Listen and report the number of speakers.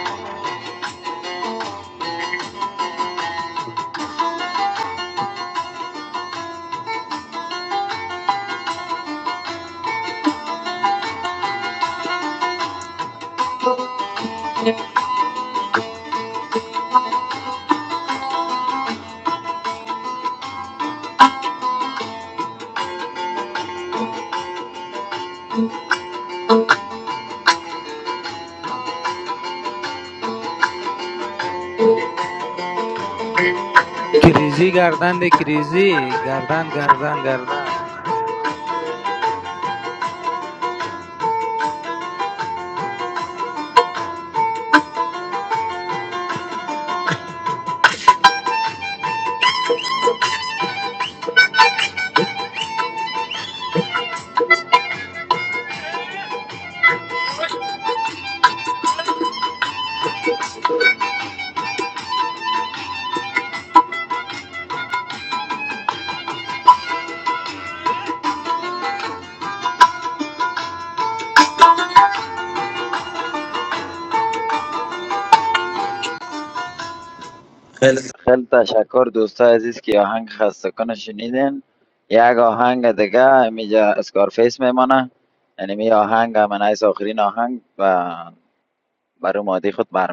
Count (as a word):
two